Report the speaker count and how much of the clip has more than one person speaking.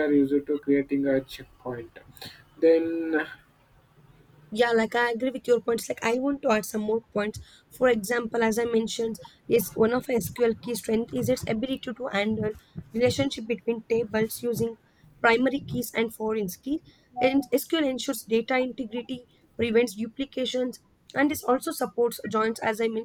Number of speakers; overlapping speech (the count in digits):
2, no overlap